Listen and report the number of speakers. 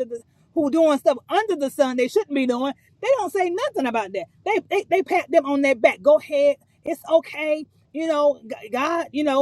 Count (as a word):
one